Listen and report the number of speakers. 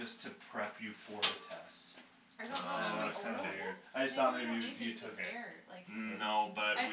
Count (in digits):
3